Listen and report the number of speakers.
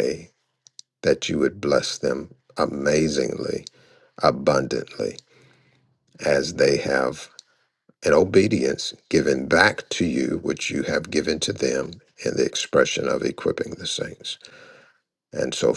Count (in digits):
1